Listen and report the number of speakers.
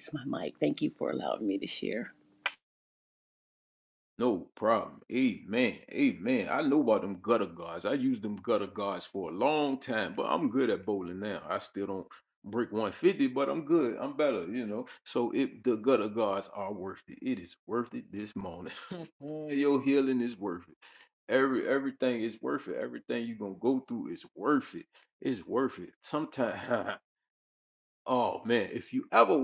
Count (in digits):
2